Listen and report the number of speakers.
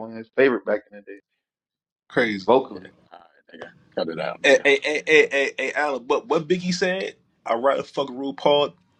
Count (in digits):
3